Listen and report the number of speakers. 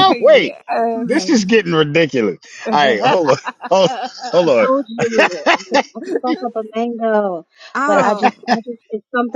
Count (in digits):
3